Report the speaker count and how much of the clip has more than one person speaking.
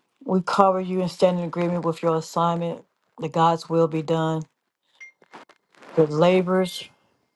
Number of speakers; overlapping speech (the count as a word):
one, no overlap